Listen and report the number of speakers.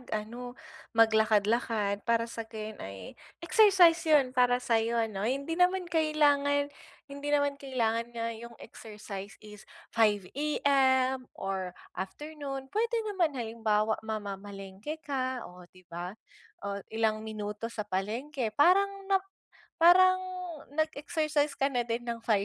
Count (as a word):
one